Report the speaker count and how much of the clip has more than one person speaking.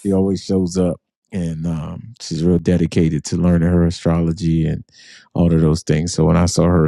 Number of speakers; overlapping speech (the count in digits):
1, no overlap